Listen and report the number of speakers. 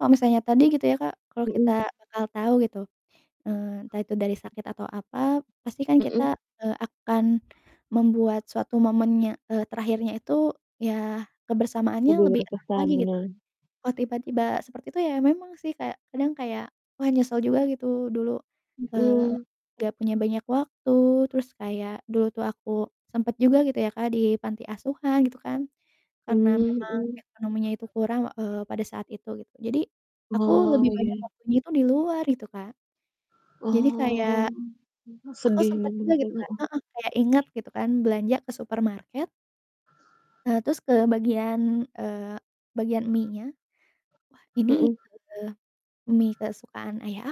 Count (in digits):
2